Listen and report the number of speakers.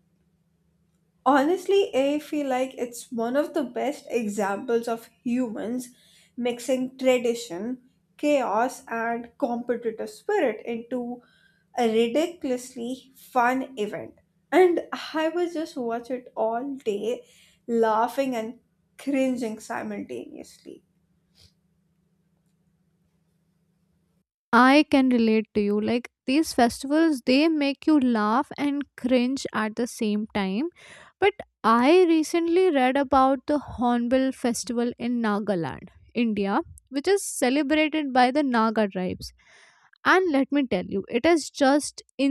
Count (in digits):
2